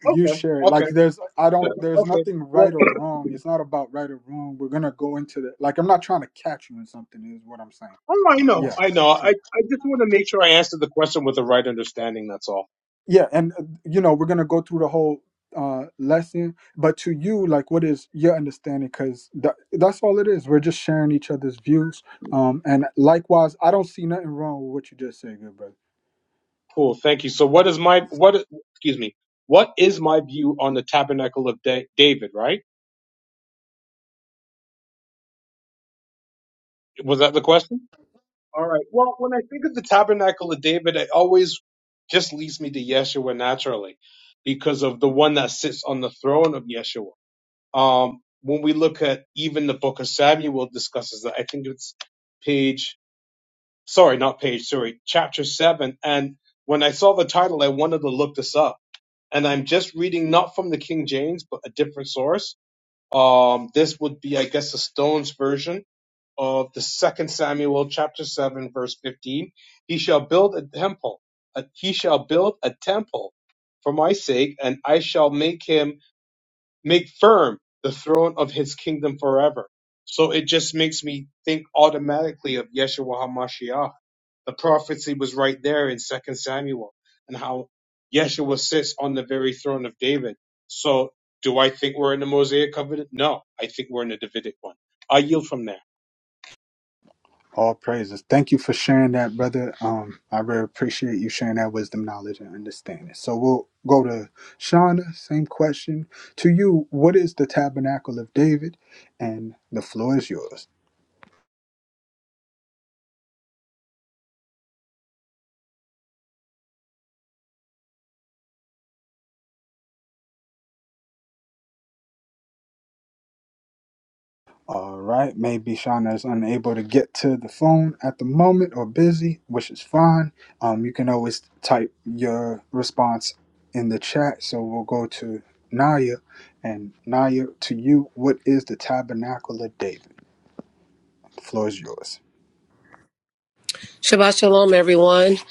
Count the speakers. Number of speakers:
3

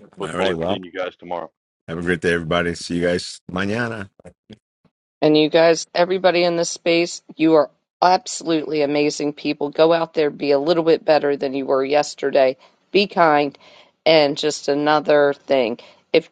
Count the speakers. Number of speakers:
3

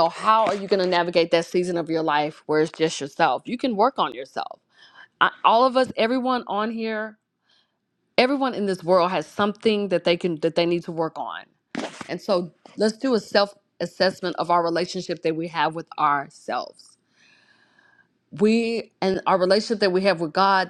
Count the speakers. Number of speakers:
1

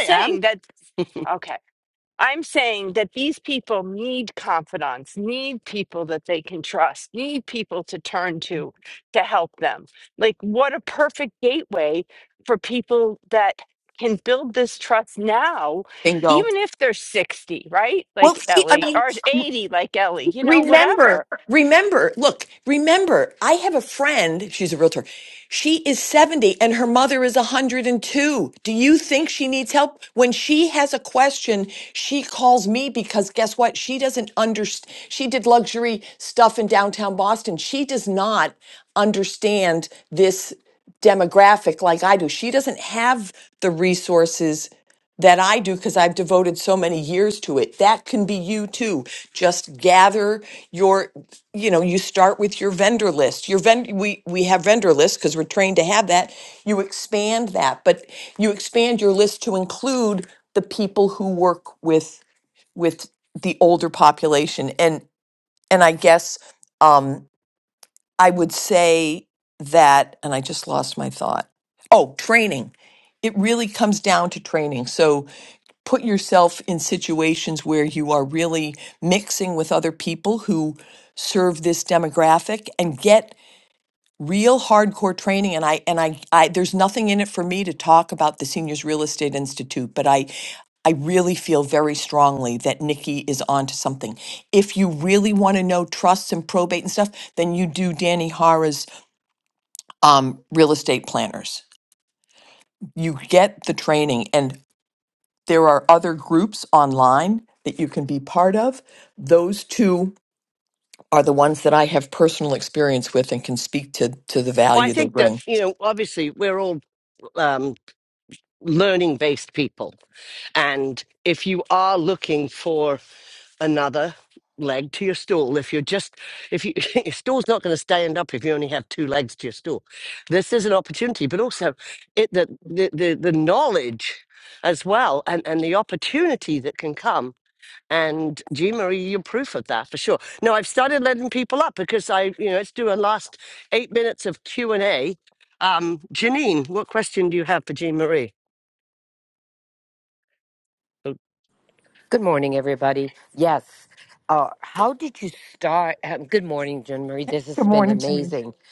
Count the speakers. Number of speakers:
4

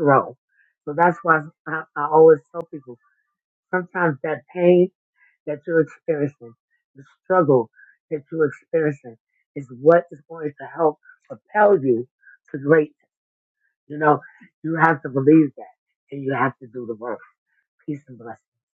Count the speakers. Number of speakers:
1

